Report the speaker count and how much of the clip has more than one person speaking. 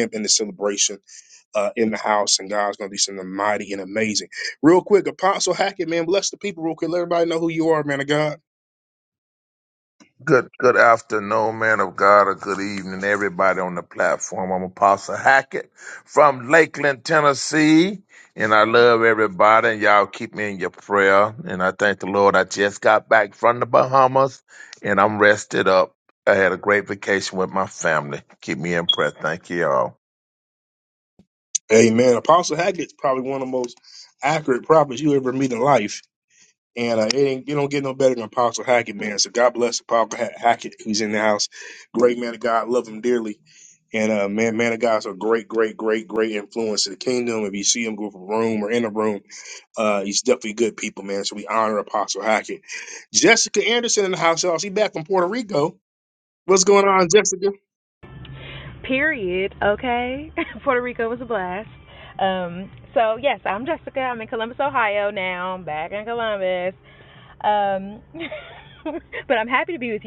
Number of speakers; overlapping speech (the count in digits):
3, no overlap